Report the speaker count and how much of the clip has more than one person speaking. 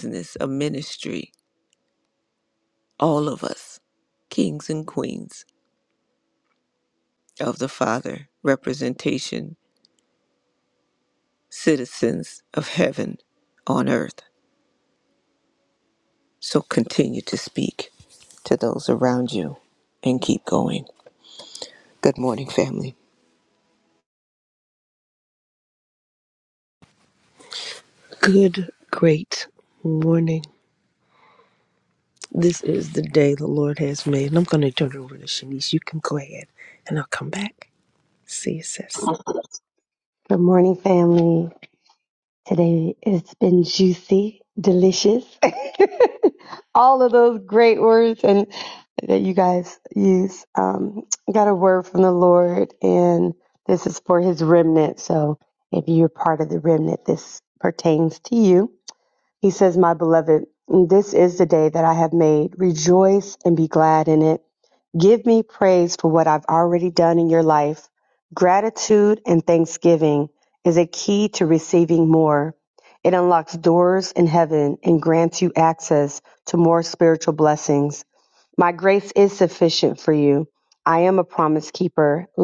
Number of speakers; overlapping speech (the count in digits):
3, no overlap